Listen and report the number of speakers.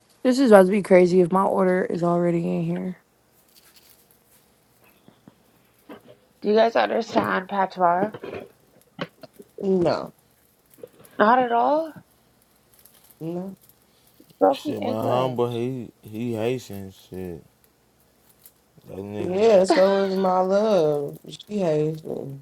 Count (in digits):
4